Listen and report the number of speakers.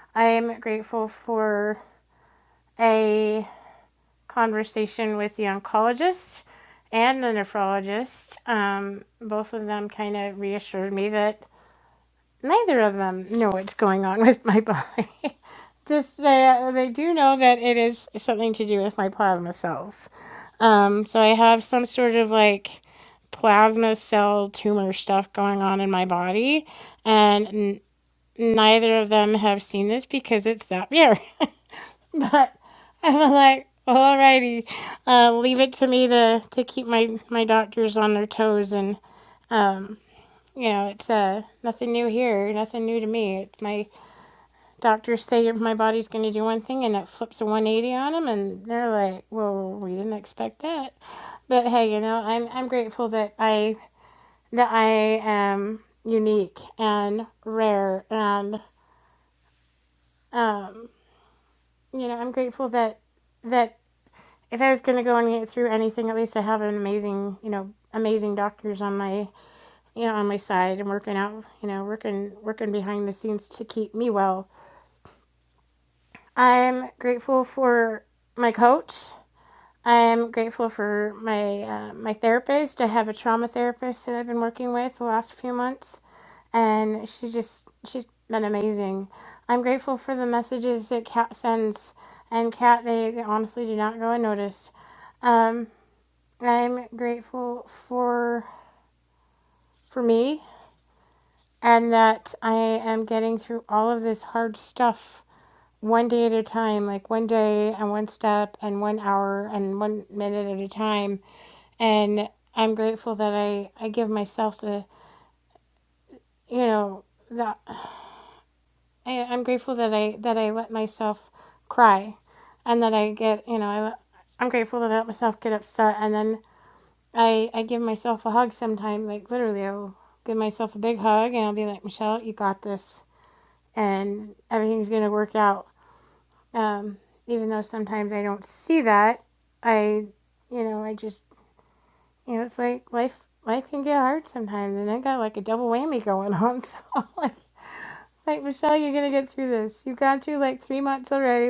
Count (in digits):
1